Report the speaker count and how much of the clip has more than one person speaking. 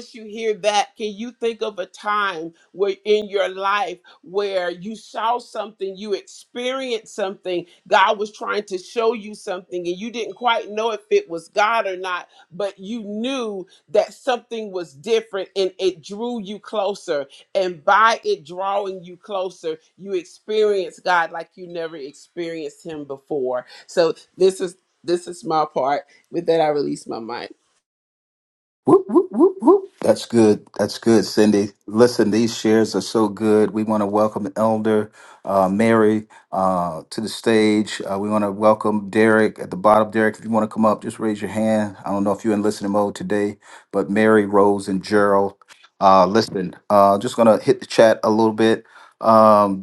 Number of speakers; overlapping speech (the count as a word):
two, no overlap